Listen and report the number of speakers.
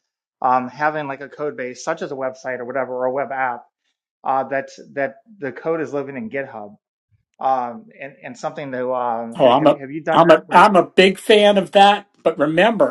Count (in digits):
2